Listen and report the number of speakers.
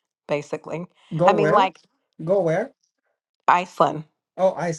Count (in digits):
2